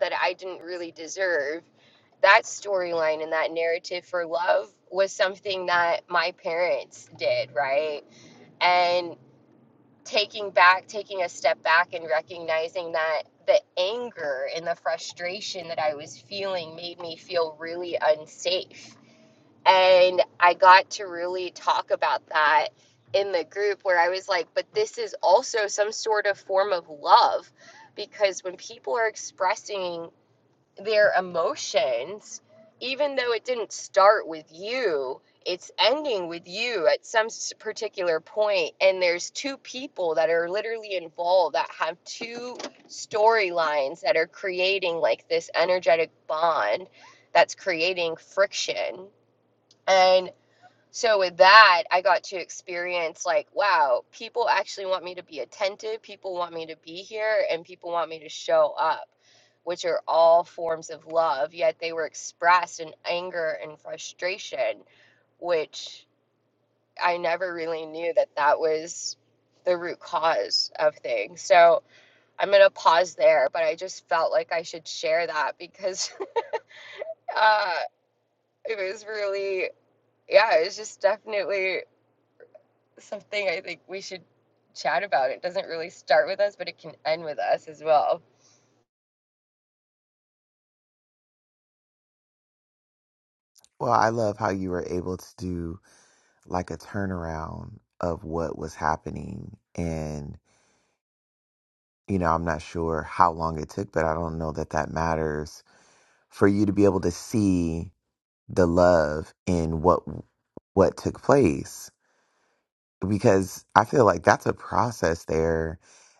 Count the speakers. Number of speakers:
2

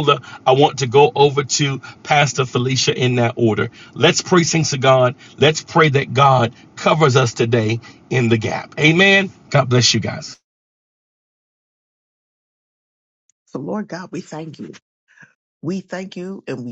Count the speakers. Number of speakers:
2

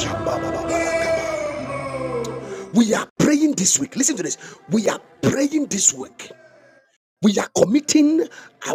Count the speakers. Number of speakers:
1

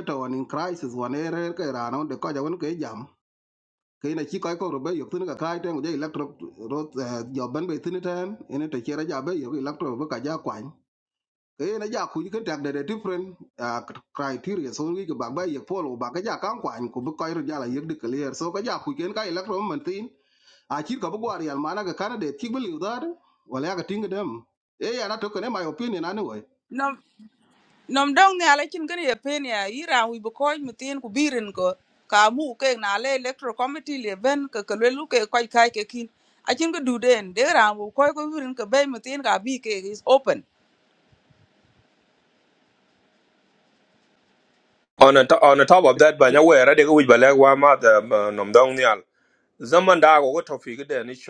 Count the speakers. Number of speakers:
3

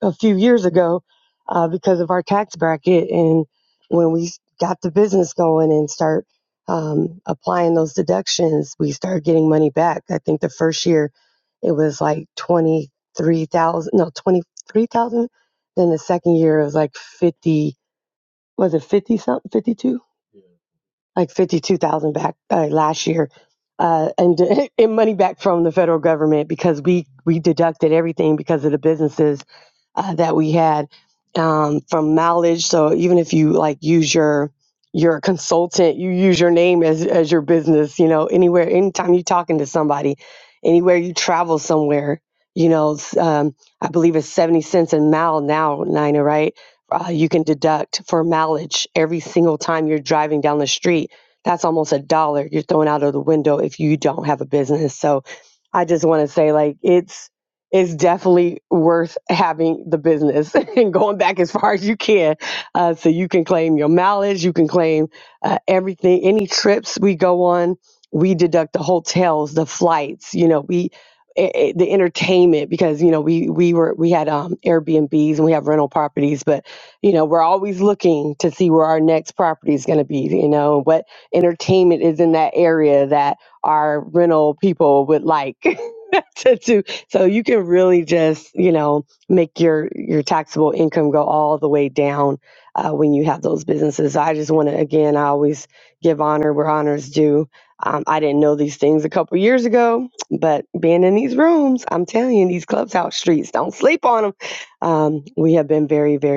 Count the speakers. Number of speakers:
1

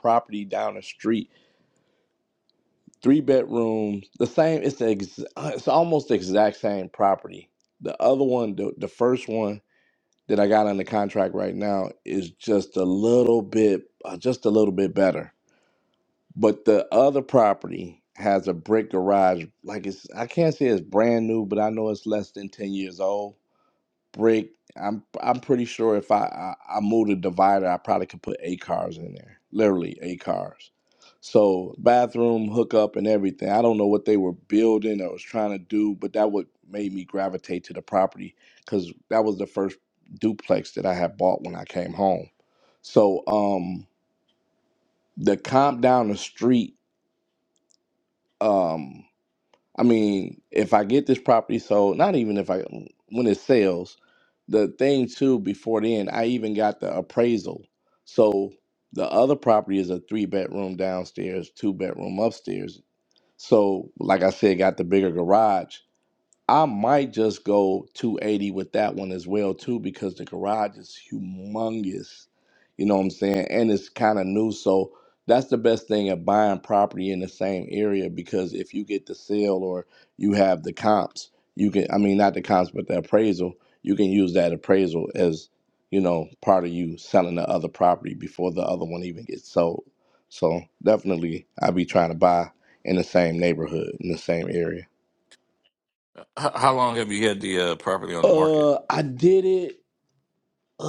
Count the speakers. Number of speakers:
2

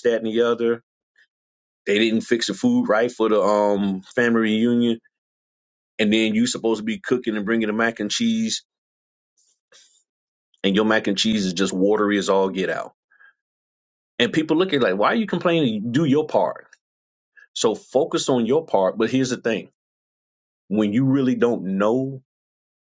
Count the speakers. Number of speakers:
1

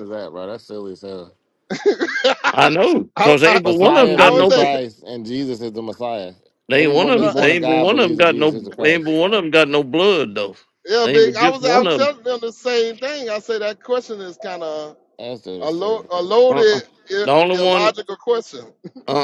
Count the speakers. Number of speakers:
3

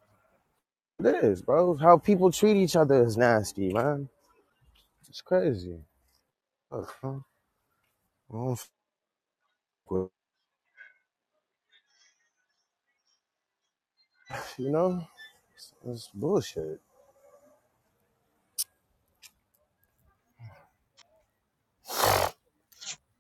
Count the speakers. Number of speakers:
1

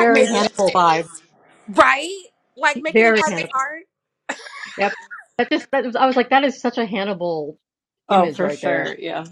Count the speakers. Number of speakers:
3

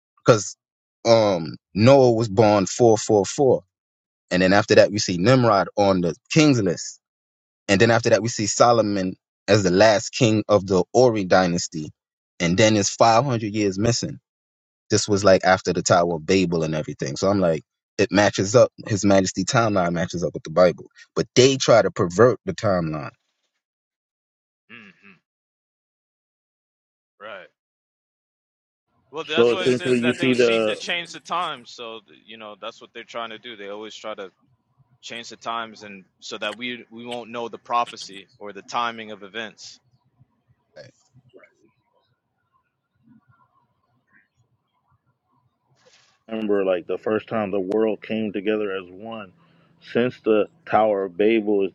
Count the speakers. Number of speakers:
3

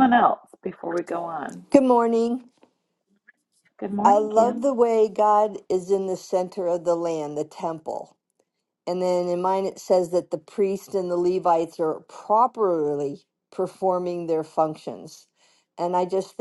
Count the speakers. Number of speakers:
2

